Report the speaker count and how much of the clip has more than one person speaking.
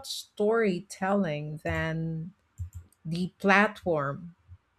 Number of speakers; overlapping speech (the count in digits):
1, no overlap